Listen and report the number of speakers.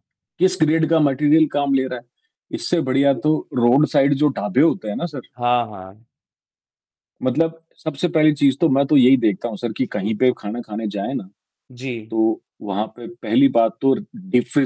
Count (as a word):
two